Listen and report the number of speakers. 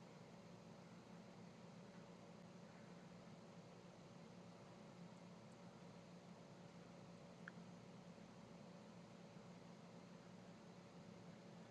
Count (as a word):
zero